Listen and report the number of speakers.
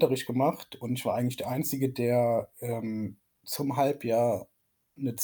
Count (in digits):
1